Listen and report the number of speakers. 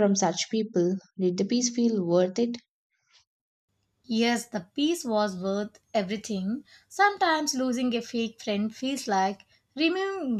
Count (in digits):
2